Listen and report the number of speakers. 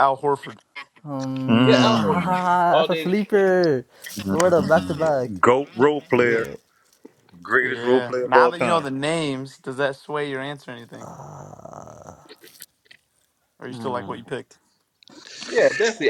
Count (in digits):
4